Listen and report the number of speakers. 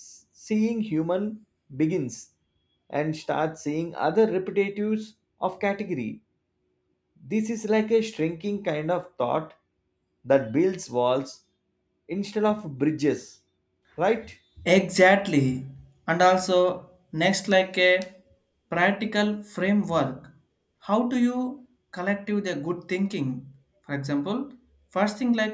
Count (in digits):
2